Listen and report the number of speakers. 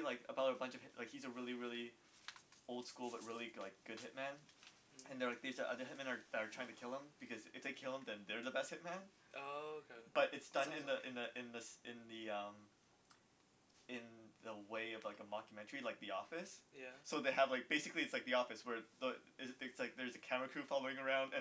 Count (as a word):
two